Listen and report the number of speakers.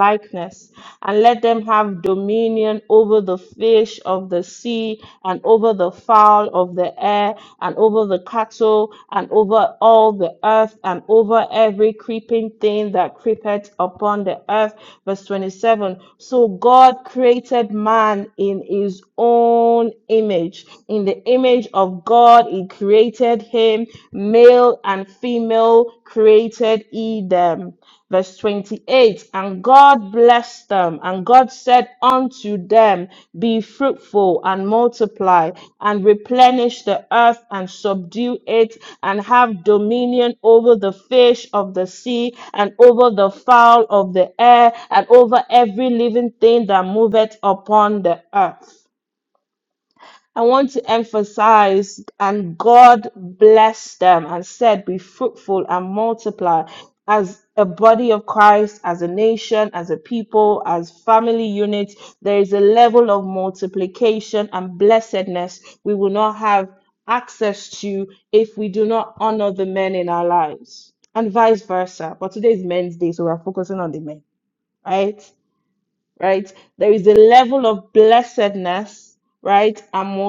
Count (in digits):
1